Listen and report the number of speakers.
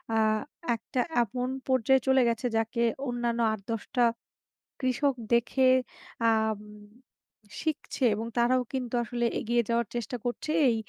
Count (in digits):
1